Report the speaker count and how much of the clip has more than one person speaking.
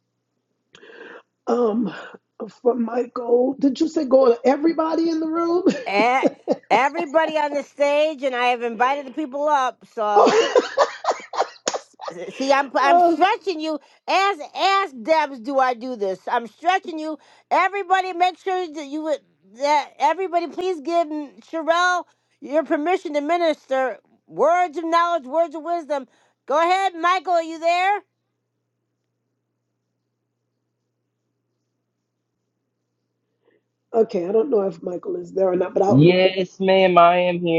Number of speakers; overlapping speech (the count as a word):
three, about 2%